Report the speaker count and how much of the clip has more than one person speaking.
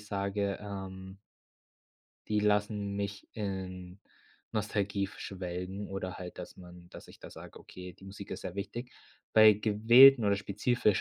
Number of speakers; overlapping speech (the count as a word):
one, no overlap